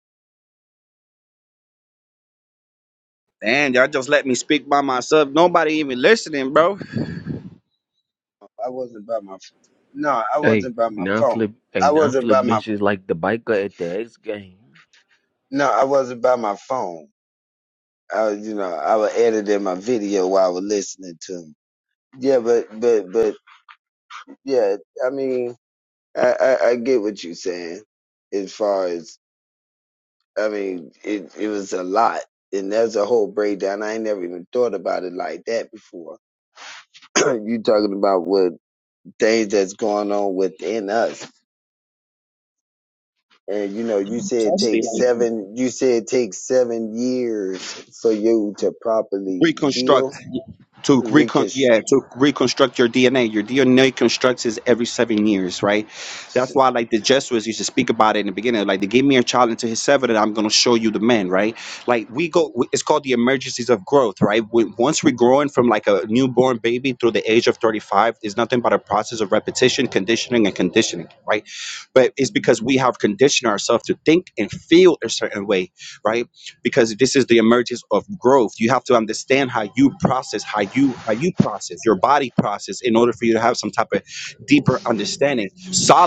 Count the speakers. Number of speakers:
three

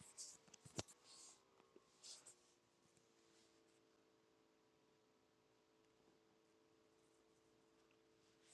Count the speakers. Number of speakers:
zero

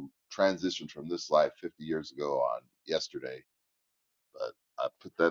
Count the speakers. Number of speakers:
one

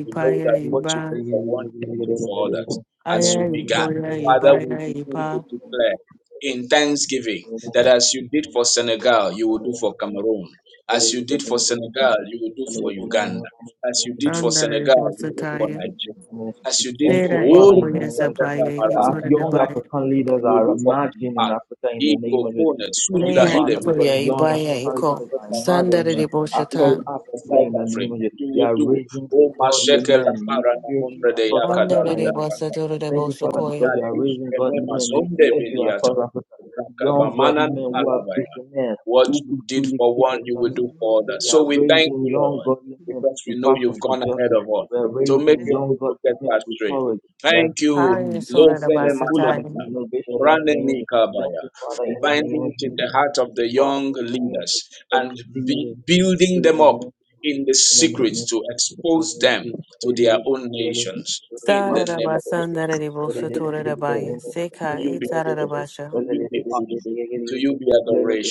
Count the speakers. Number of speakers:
three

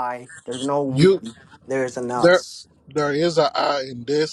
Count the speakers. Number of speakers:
two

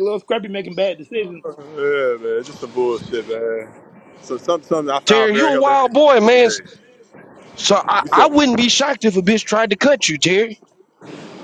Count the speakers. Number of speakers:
three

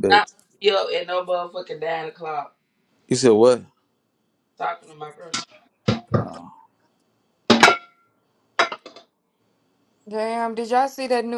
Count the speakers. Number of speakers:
three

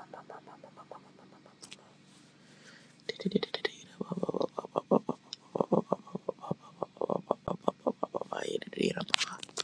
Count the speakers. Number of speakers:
zero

